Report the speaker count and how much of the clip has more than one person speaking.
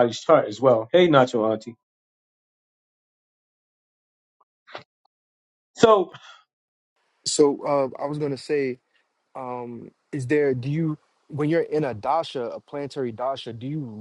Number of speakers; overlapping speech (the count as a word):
two, no overlap